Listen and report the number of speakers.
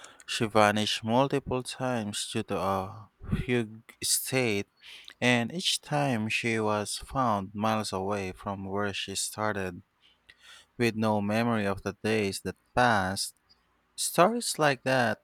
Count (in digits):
1